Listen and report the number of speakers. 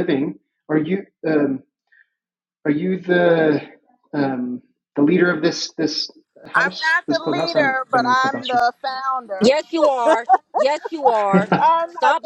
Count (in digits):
3